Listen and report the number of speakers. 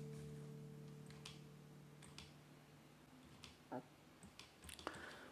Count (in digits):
0